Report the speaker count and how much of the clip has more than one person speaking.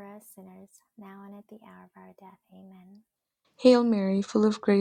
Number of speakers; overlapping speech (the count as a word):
two, no overlap